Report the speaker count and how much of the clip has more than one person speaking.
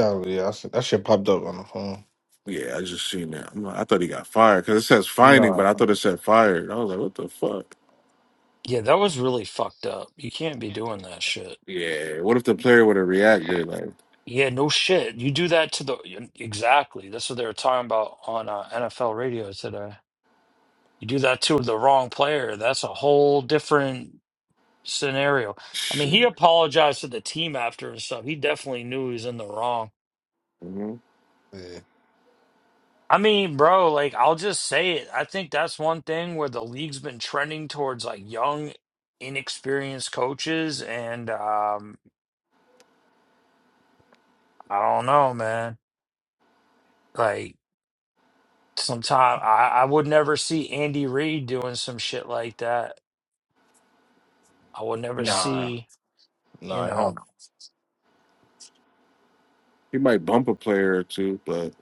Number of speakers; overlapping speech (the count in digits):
3, about 3%